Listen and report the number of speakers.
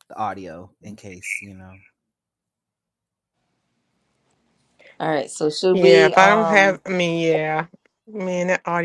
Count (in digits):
3